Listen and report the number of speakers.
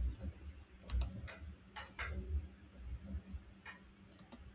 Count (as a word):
zero